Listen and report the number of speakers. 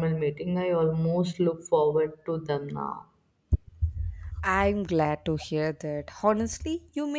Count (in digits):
2